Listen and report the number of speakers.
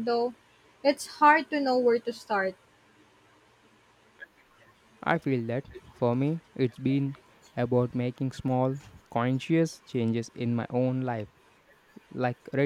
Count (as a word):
two